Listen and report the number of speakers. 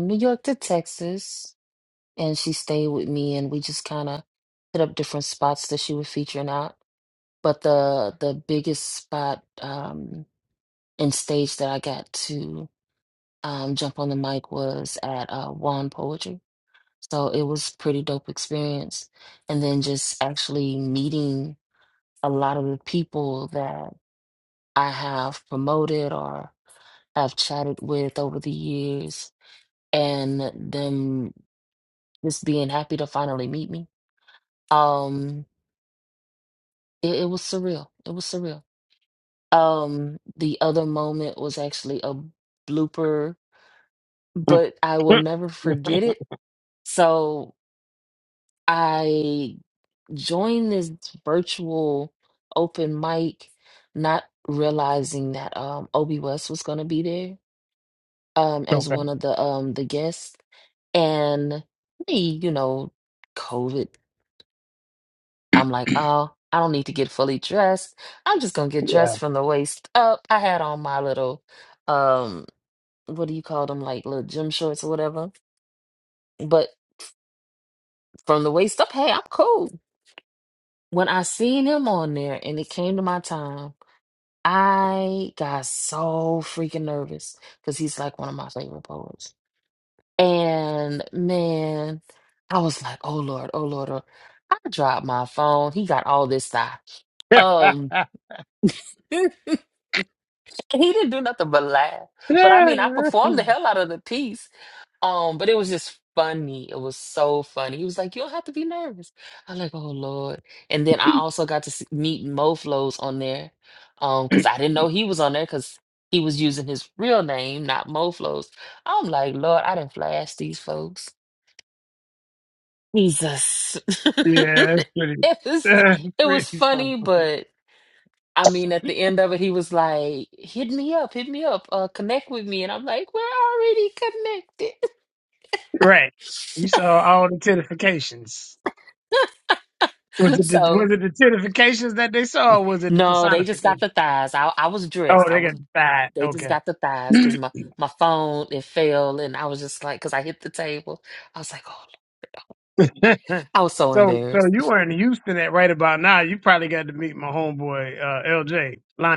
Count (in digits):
2